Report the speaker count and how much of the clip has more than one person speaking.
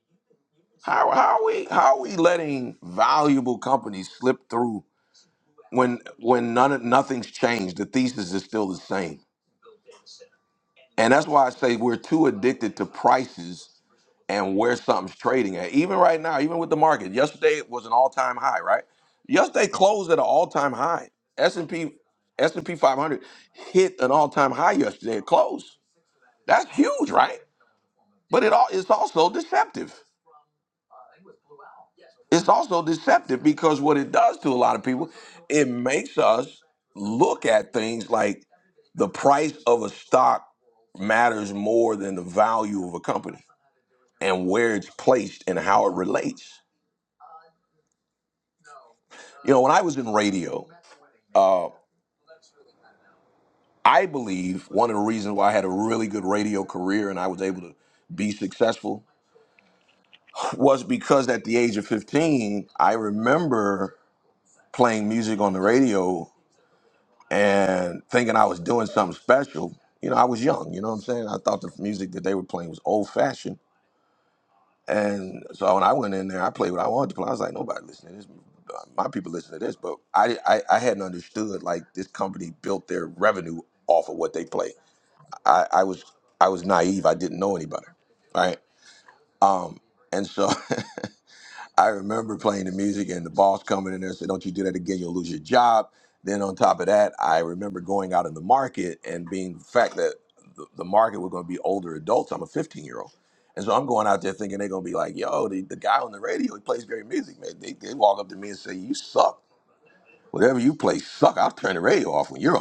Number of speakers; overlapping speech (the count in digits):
1, no overlap